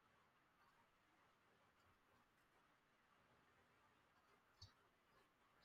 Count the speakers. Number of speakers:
0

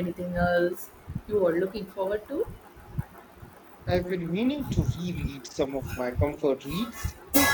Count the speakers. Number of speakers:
2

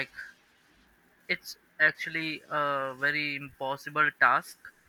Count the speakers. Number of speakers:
1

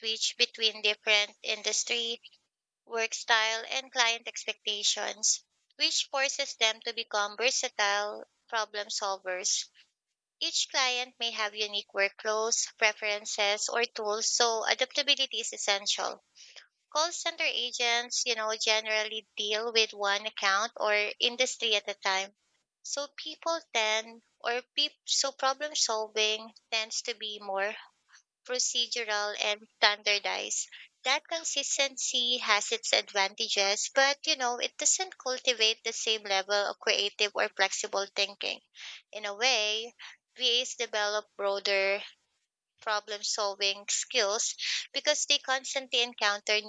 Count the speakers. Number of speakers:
1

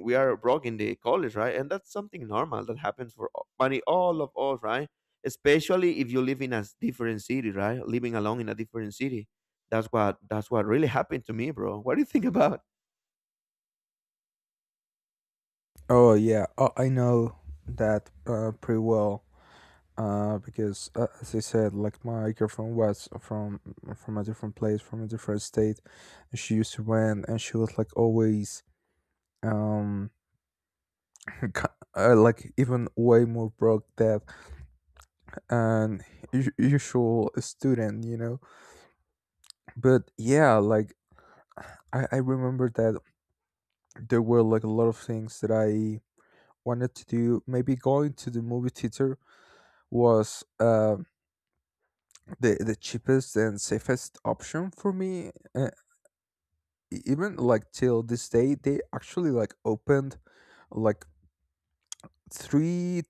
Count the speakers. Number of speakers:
2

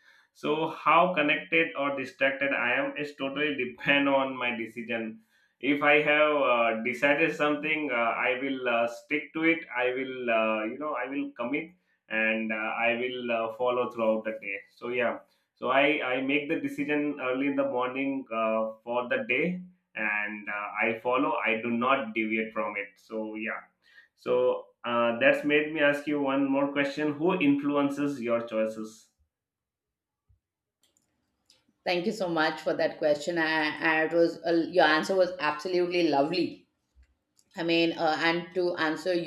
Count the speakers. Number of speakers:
2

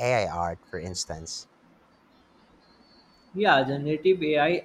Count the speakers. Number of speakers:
2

